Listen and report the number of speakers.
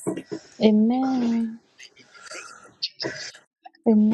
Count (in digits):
2